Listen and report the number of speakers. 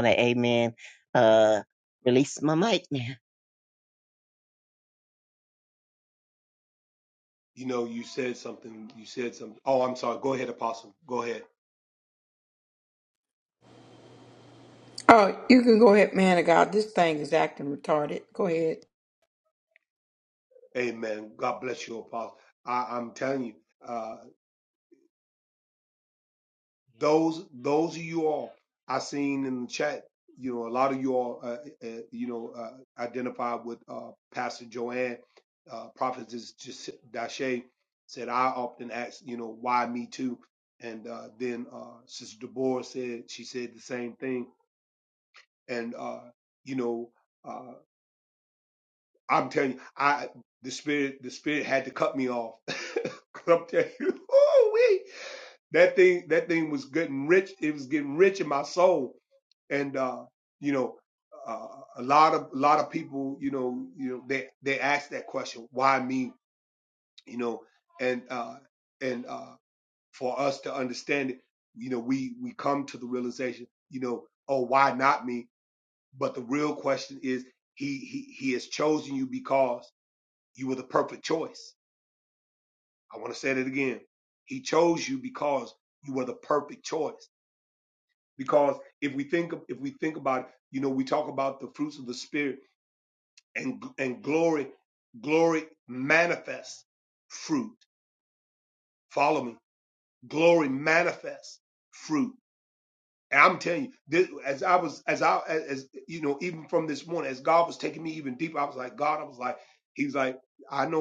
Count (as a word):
three